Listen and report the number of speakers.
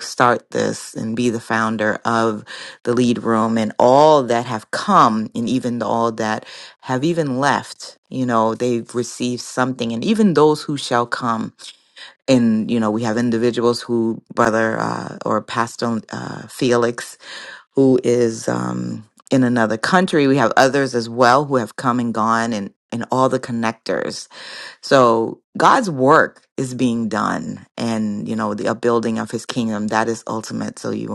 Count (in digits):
1